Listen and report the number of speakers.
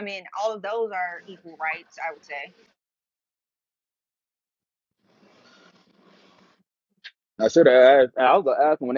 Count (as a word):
two